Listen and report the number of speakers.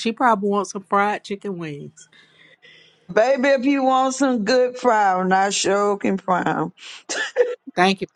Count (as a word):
two